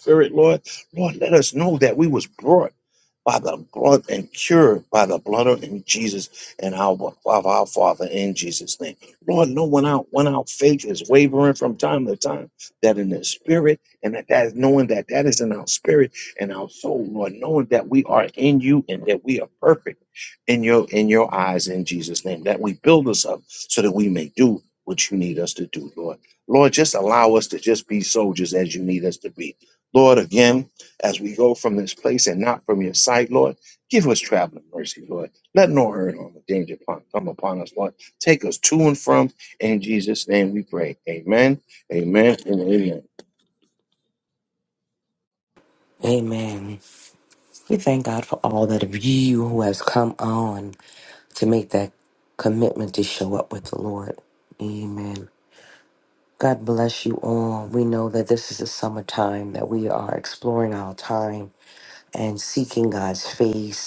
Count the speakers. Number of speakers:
2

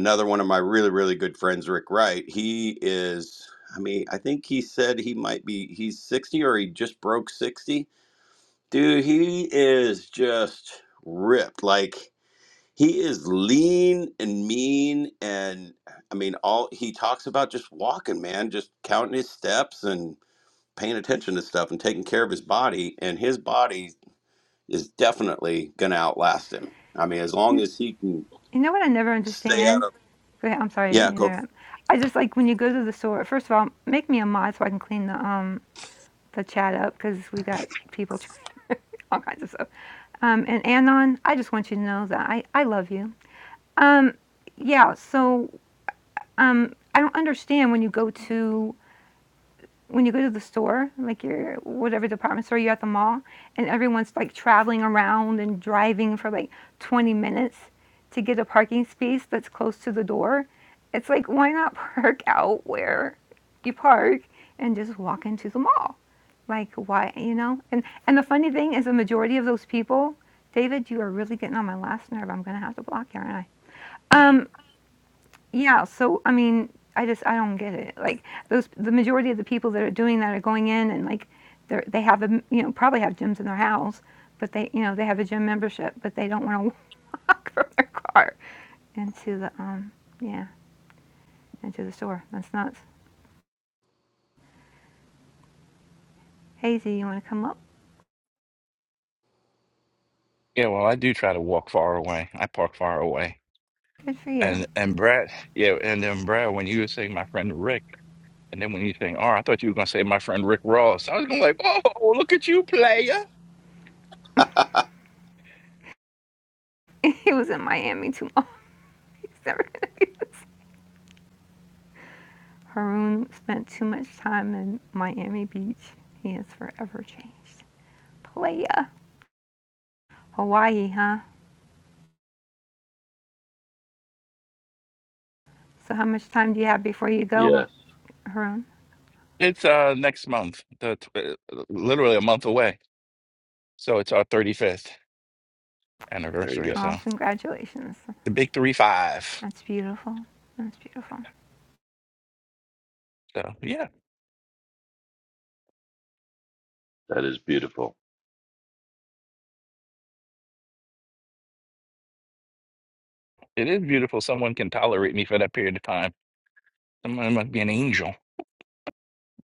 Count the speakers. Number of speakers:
4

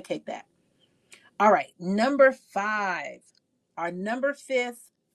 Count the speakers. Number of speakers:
1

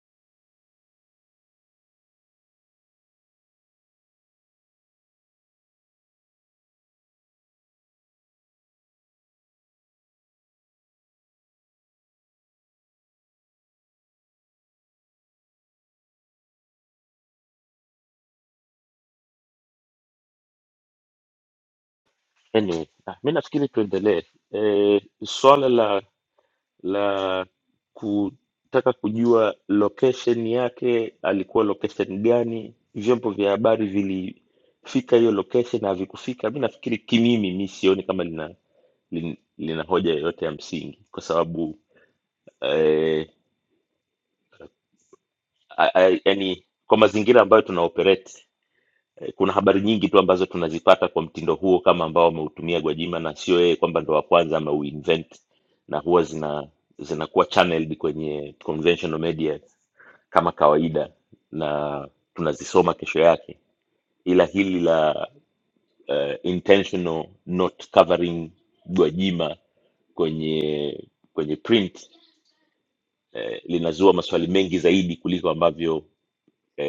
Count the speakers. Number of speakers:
1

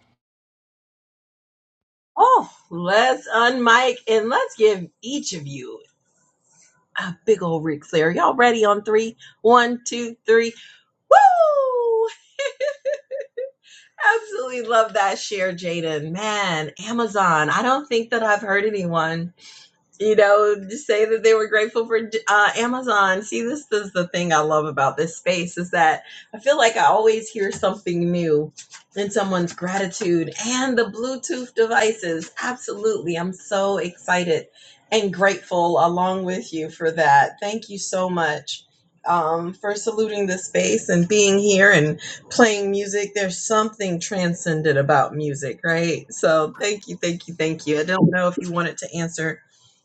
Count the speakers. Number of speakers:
1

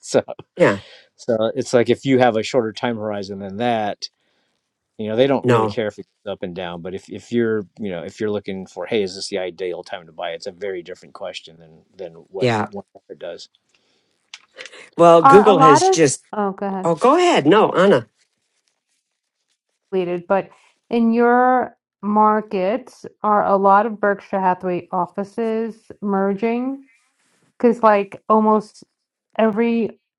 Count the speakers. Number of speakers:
3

